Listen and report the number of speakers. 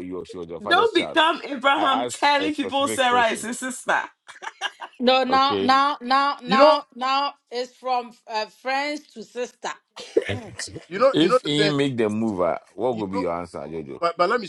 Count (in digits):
4